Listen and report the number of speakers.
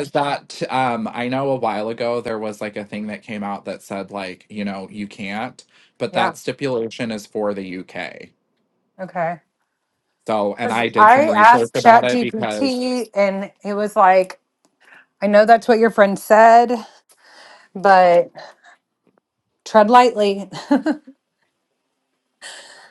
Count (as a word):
two